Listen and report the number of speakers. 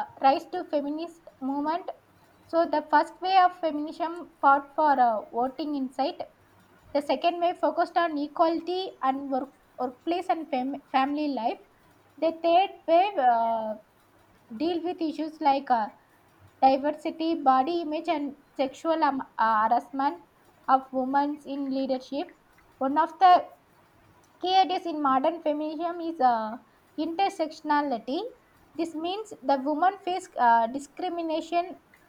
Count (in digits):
1